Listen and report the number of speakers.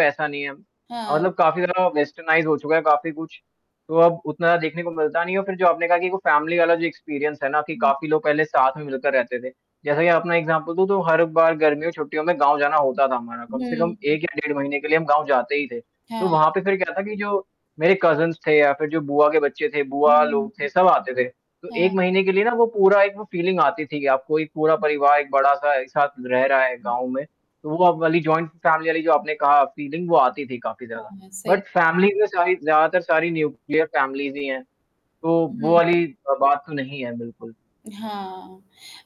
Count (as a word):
two